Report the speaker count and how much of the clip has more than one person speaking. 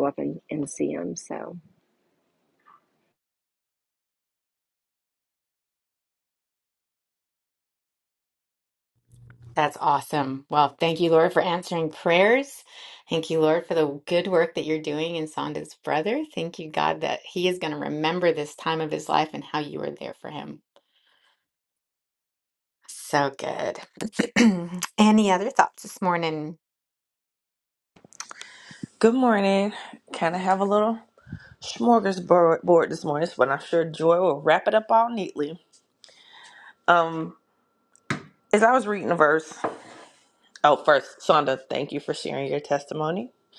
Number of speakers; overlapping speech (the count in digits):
3, no overlap